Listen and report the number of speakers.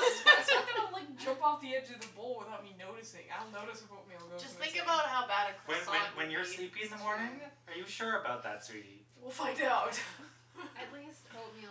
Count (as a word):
four